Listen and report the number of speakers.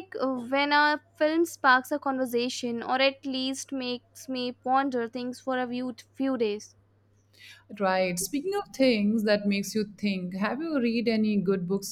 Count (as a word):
two